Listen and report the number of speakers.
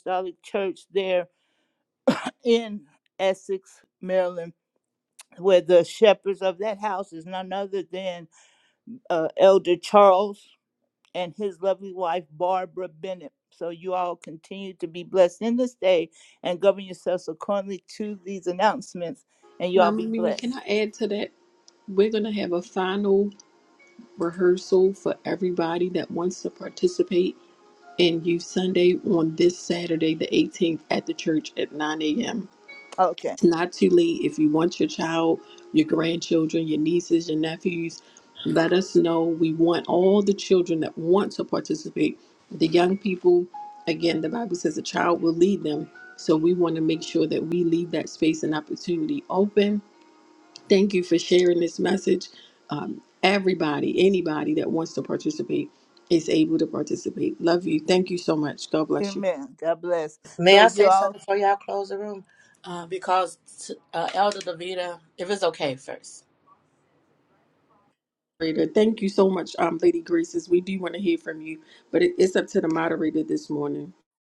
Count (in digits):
3